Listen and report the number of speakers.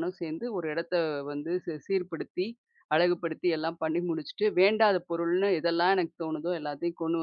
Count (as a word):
one